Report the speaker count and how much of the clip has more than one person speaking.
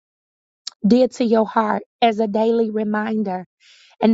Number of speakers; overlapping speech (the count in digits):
1, no overlap